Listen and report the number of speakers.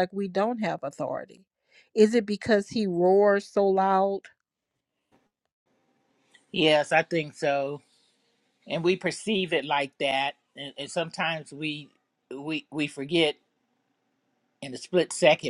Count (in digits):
2